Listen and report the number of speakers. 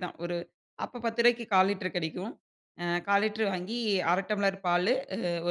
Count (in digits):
1